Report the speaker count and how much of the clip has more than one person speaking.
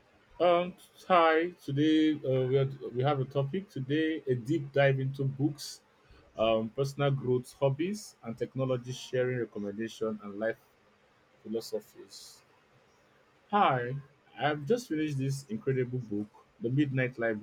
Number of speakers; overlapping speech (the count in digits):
1, no overlap